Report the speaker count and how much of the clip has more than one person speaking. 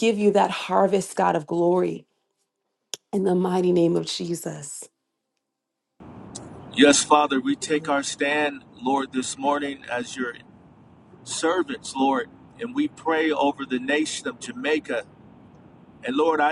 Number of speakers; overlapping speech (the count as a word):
two, no overlap